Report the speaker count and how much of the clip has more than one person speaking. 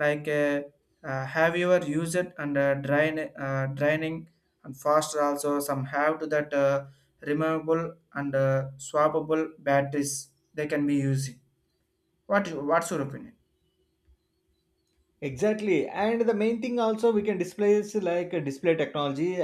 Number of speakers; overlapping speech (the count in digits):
2, no overlap